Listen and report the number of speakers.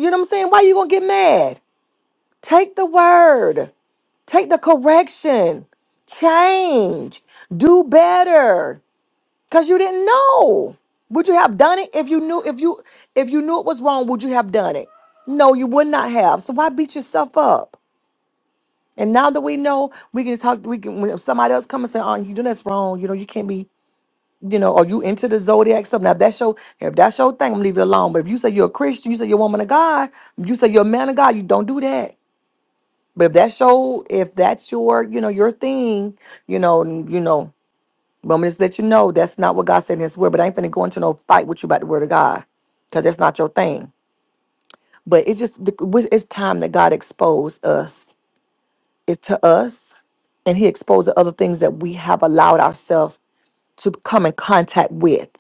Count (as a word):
one